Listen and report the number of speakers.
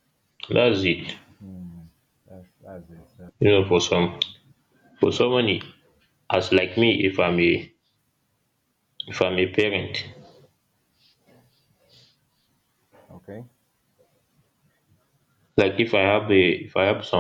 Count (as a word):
two